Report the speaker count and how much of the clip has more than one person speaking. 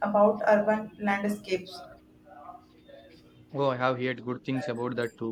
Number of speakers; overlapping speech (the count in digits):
2, no overlap